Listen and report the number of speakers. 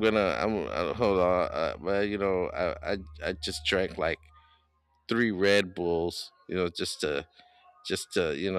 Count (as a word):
one